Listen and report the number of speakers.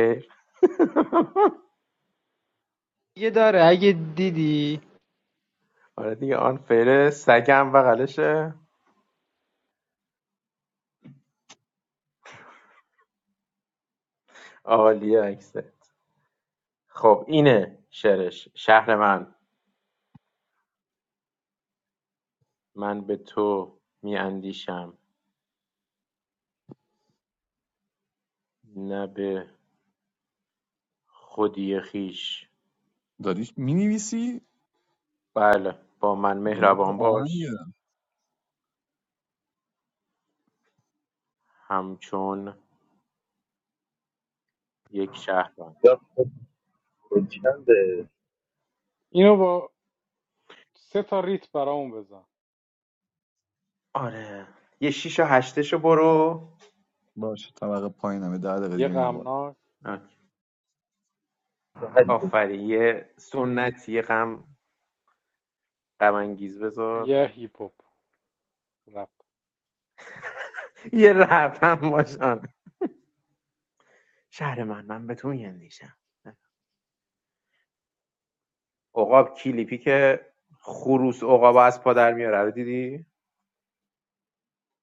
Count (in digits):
5